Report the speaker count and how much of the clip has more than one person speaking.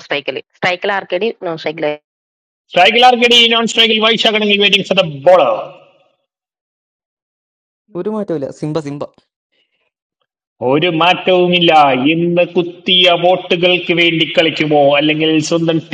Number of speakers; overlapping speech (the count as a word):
three, no overlap